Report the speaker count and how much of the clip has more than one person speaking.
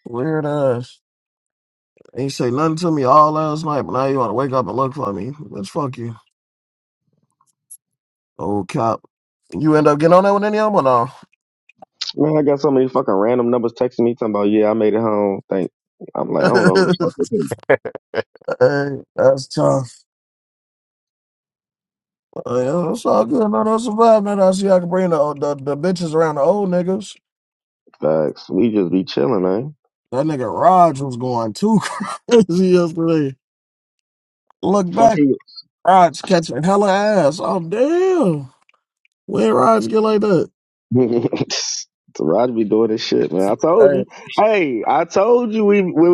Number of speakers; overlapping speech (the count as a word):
two, about 1%